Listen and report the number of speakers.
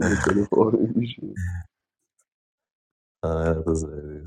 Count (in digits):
2